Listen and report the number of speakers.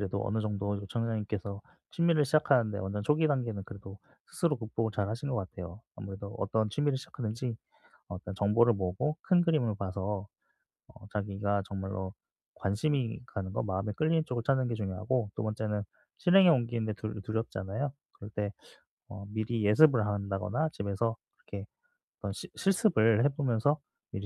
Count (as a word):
one